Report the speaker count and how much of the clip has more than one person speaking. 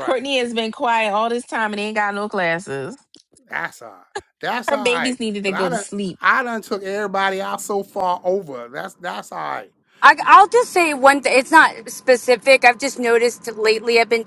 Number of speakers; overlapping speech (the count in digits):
3, about 10%